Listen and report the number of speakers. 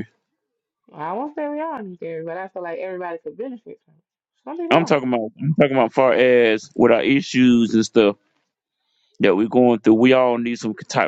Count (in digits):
2